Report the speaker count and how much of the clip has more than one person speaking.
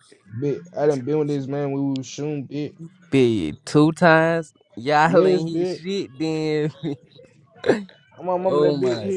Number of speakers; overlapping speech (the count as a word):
two, about 16%